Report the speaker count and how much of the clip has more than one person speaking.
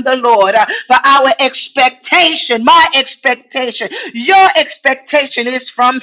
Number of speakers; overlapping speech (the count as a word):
one, no overlap